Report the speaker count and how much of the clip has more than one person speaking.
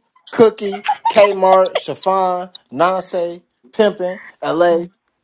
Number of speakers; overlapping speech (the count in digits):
1, no overlap